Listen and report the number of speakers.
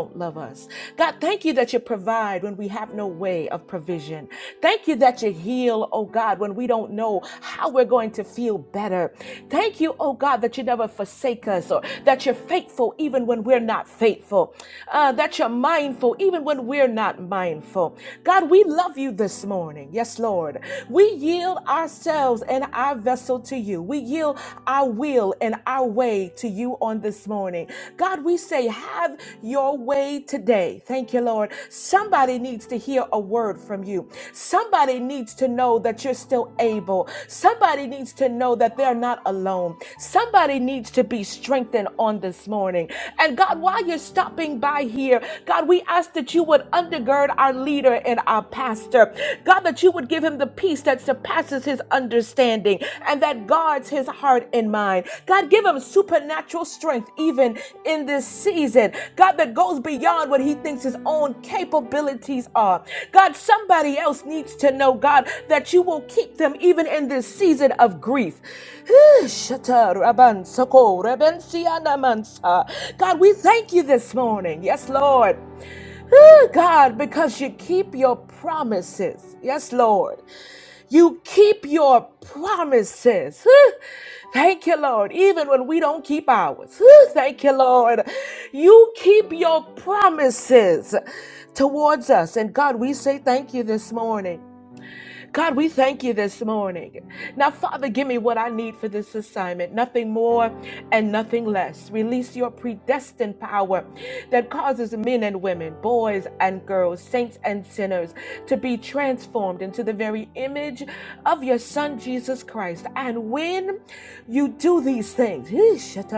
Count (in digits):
1